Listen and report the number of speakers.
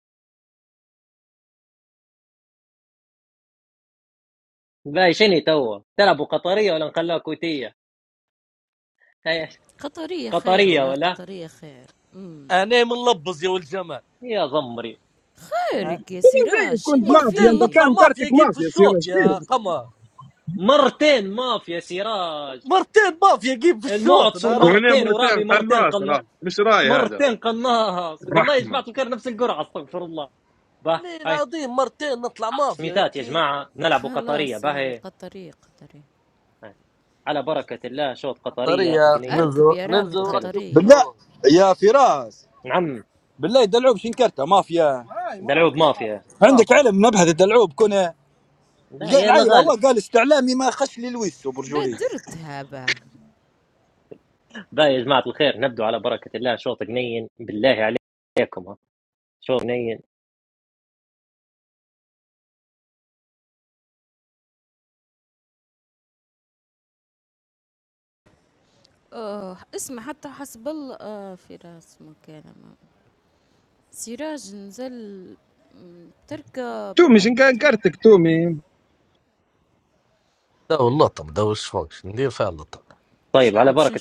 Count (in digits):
6